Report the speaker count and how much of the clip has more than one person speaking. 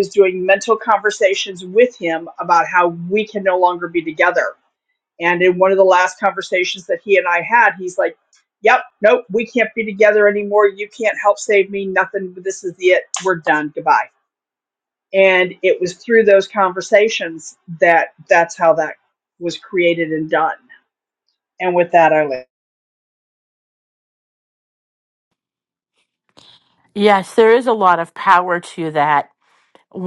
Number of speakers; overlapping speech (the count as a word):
two, no overlap